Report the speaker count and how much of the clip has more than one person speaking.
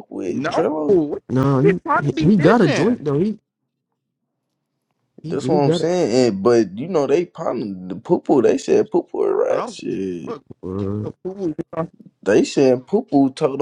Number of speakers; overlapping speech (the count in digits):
3, about 22%